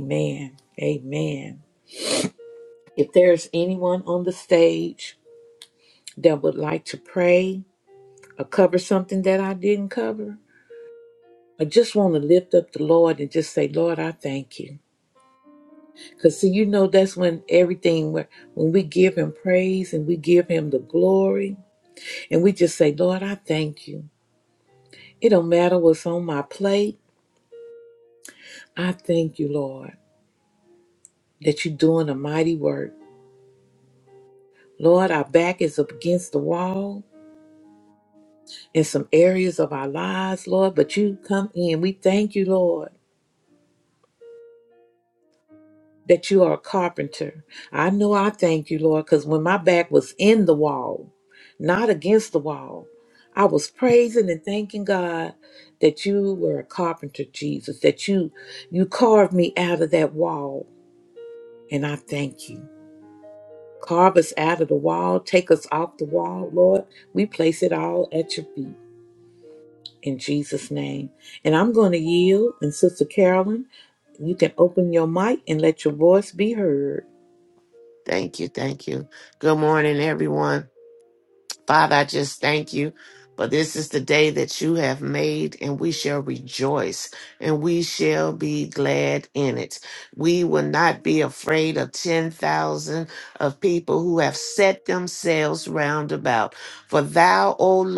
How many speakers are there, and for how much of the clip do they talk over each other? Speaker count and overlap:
two, no overlap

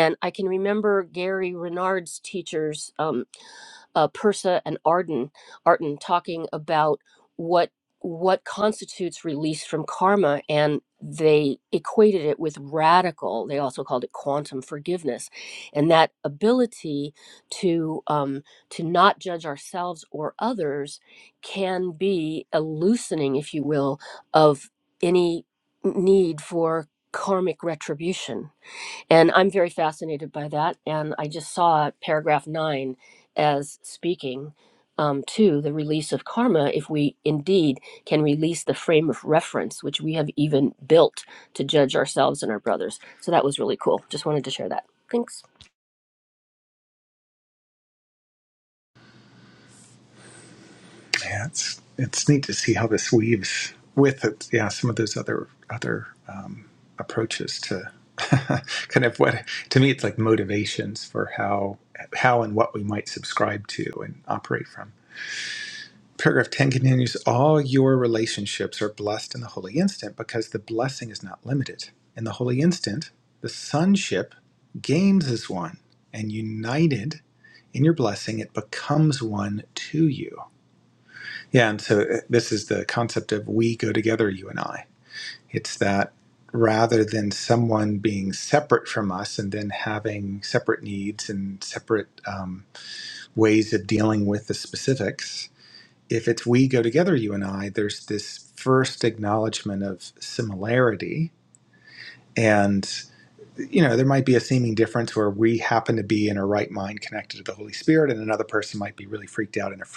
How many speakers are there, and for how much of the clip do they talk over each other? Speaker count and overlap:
two, no overlap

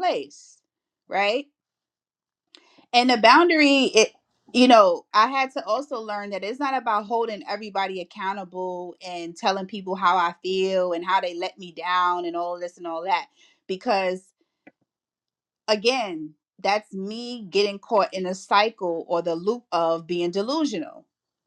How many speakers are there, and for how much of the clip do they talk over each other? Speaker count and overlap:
one, no overlap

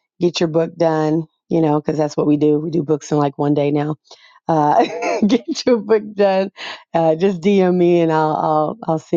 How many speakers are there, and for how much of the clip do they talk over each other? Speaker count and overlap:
one, no overlap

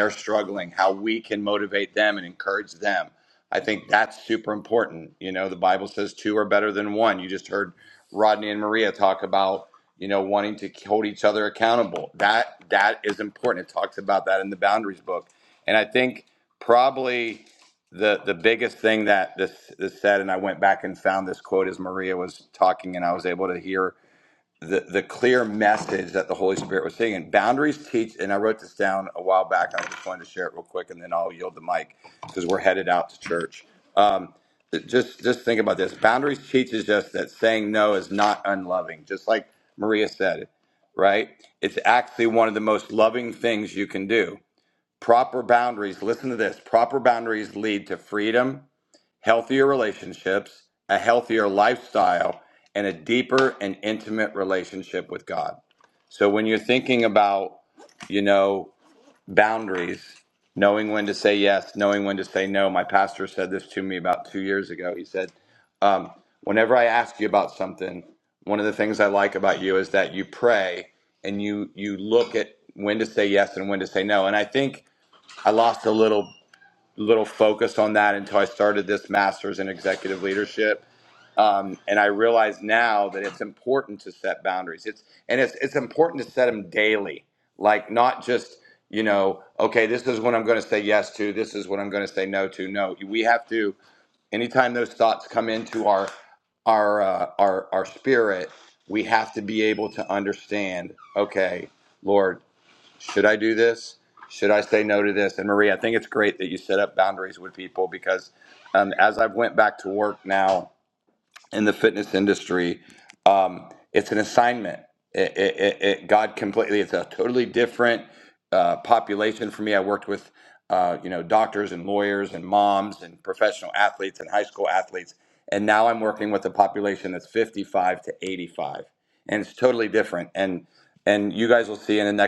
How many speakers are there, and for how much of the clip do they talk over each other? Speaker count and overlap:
one, no overlap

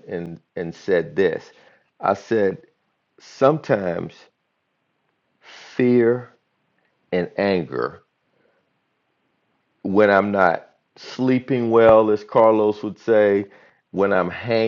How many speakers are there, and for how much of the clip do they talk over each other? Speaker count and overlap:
one, no overlap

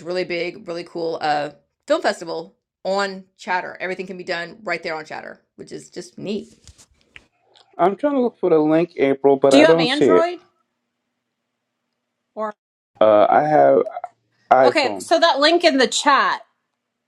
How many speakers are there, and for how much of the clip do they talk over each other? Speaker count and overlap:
three, about 7%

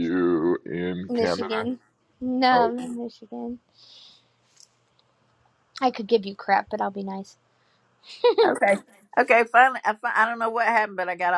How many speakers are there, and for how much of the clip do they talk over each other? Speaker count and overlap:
three, about 6%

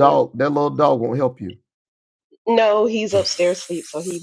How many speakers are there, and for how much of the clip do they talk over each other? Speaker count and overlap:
two, about 5%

